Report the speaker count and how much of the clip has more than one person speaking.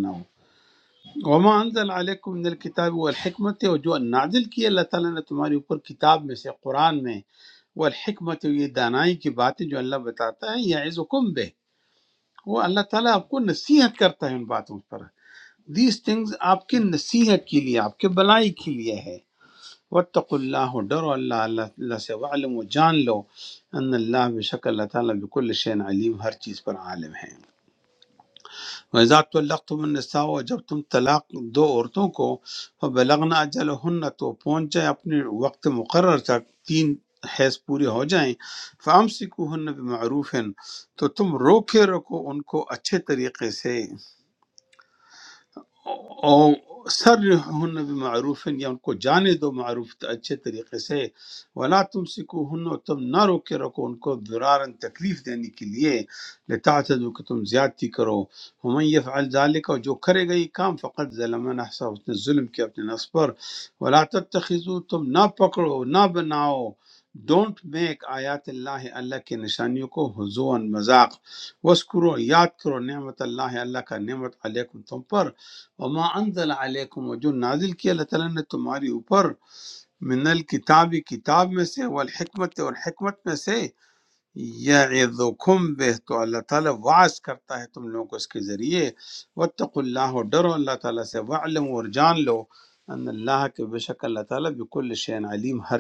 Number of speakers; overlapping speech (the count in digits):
1, no overlap